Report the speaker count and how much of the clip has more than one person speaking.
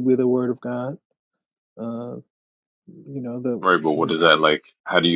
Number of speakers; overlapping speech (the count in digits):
2, about 10%